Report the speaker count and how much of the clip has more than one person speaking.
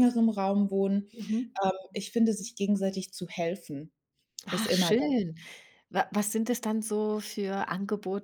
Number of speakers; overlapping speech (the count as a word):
two, about 8%